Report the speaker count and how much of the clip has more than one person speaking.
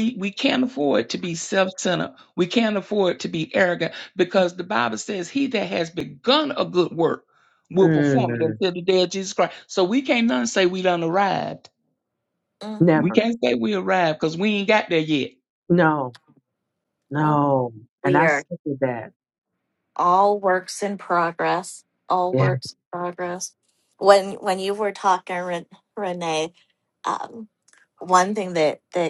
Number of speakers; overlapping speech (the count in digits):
3, about 6%